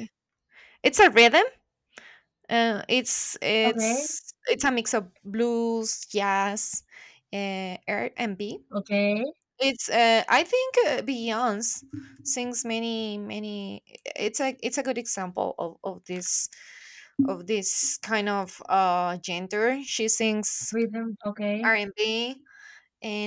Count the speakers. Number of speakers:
two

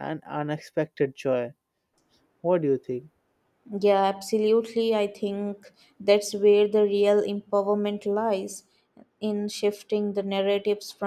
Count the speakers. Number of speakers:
two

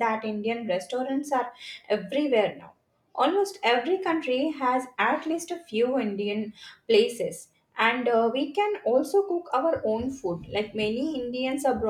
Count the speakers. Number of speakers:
one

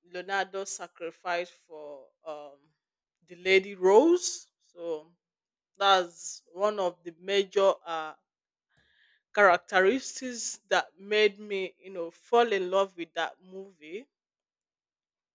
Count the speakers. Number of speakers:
one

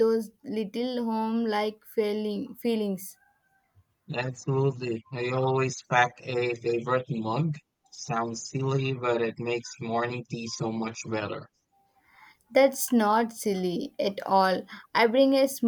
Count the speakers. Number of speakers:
two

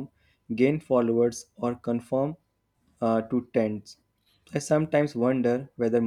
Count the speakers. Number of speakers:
one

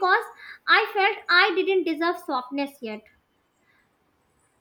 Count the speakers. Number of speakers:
one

